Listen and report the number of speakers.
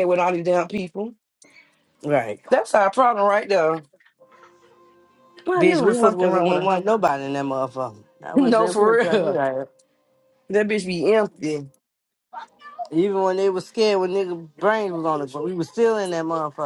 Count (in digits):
2